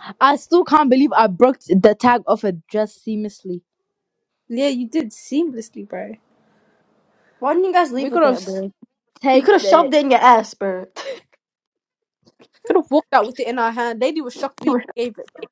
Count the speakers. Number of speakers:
three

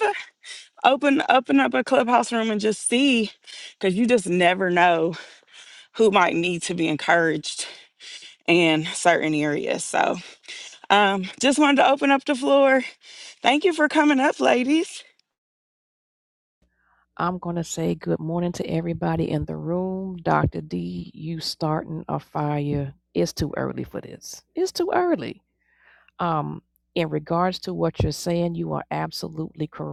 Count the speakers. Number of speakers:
two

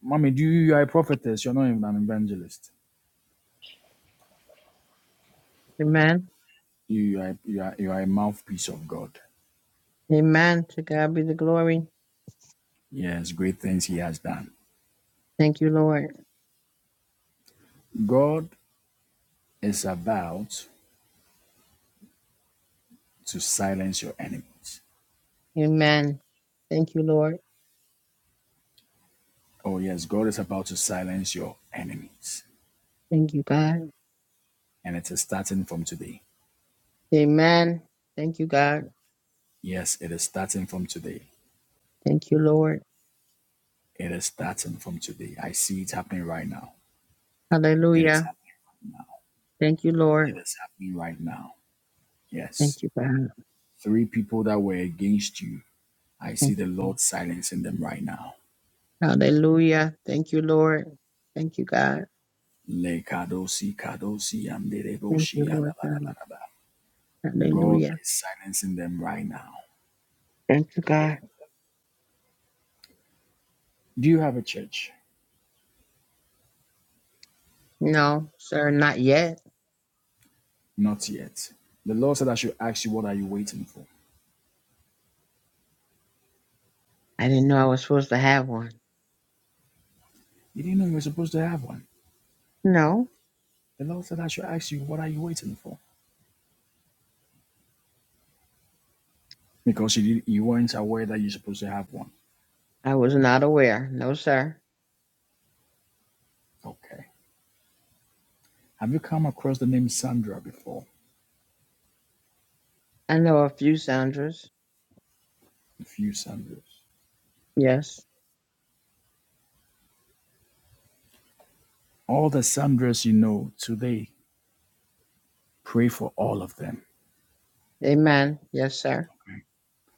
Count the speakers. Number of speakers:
two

